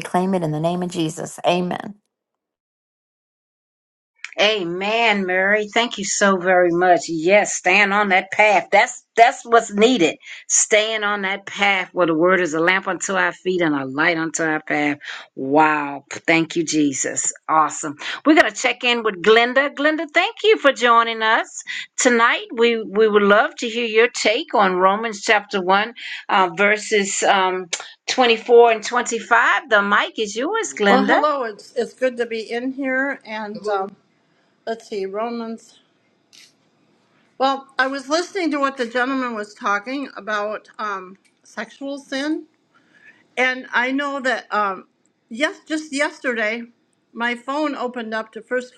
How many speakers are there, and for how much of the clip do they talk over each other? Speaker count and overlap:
3, about 1%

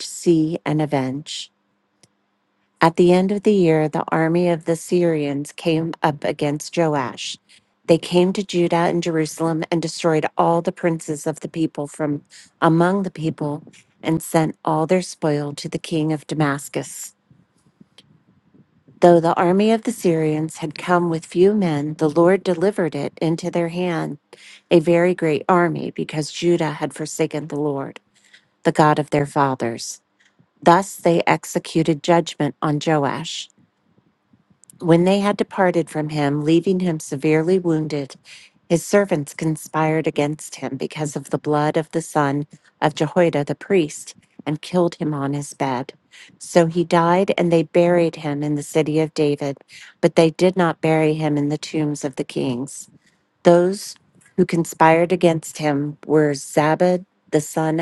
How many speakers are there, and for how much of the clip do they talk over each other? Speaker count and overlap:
1, no overlap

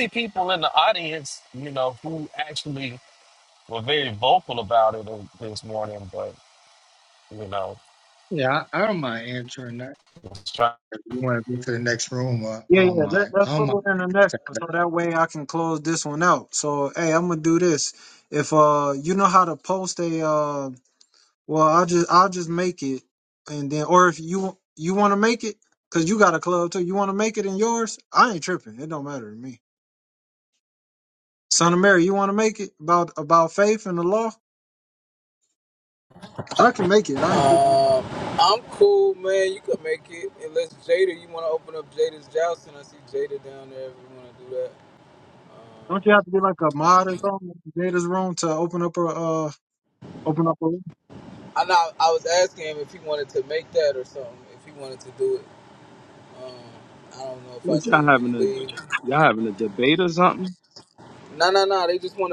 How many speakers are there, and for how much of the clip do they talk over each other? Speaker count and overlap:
5, about 4%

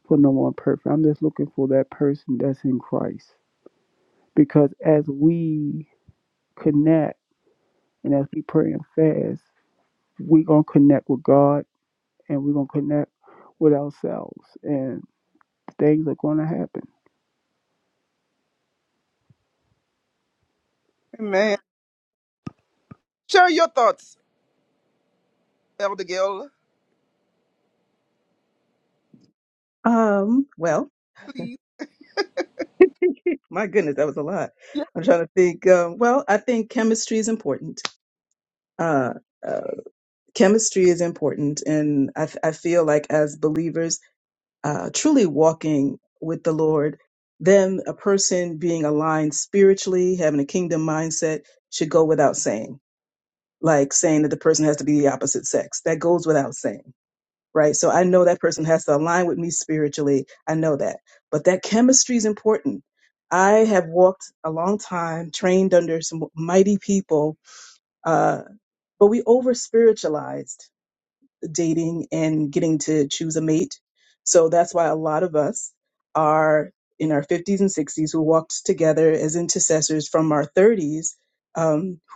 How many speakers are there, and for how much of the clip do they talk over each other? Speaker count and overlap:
3, no overlap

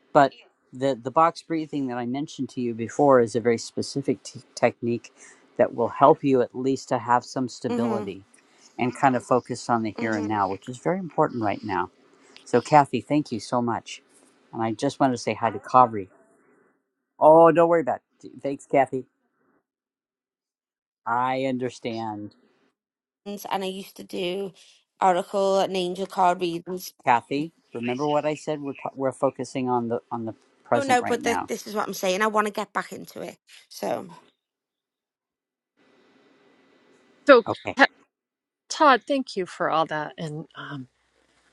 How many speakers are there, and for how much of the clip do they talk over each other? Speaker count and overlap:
3, about 4%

